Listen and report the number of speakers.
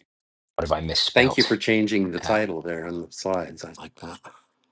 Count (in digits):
2